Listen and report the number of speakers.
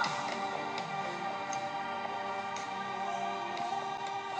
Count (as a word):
zero